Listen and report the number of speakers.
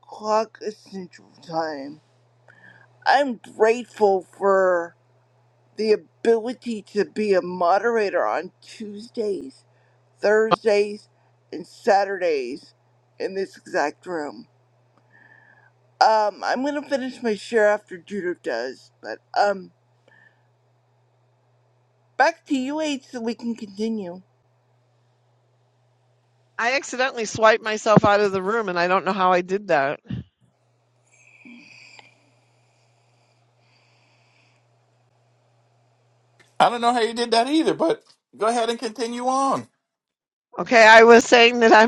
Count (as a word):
three